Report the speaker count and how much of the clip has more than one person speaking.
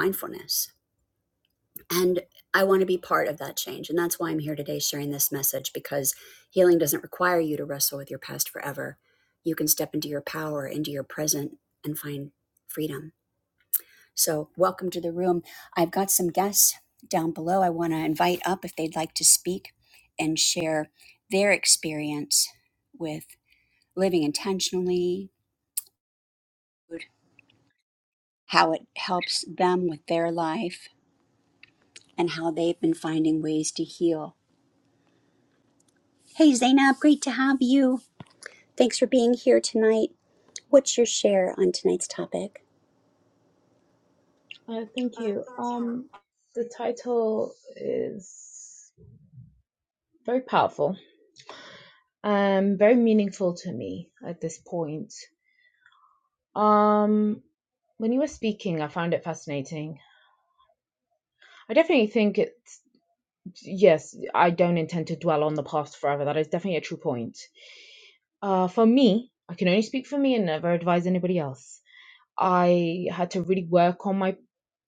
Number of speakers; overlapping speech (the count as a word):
two, no overlap